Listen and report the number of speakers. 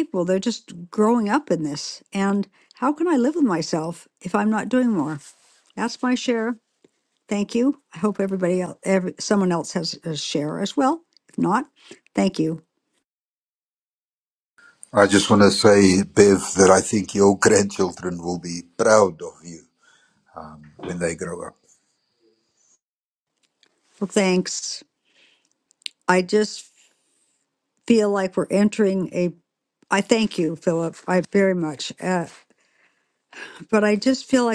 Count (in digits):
2